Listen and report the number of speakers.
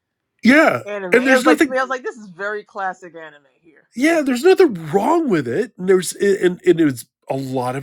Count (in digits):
2